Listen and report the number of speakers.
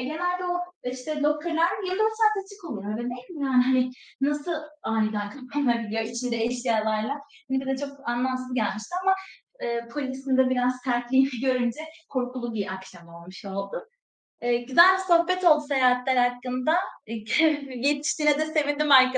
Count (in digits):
1